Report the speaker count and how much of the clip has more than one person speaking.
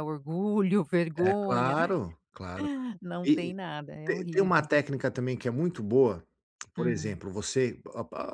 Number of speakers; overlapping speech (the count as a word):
two, about 22%